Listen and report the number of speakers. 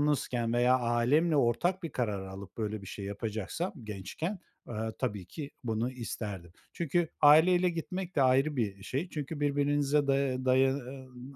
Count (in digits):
1